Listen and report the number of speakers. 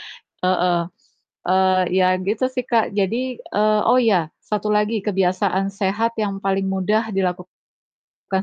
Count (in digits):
1